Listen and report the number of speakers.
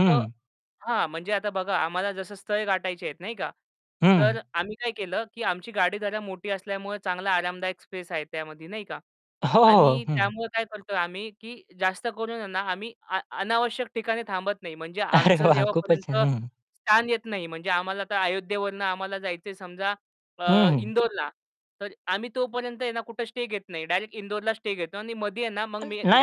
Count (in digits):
2